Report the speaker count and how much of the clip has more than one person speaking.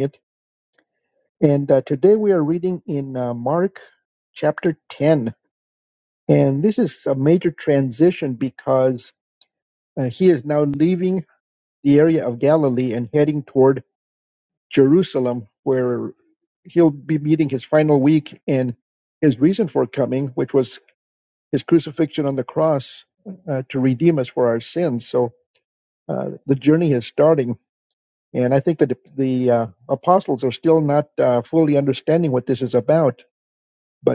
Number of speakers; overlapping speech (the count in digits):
1, no overlap